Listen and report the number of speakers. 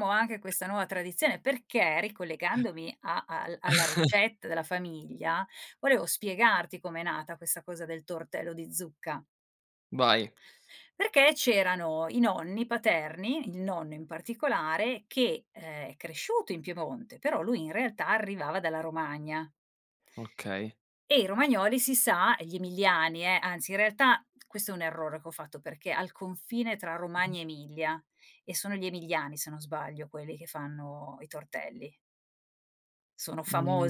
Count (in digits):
2